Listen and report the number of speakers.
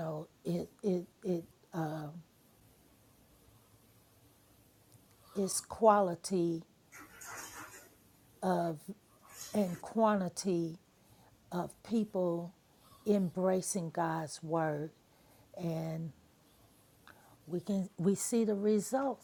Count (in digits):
1